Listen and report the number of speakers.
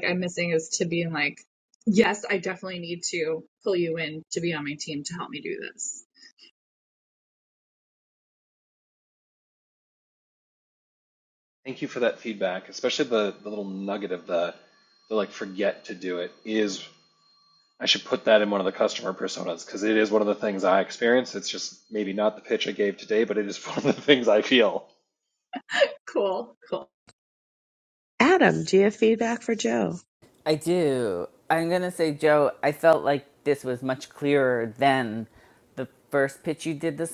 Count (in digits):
4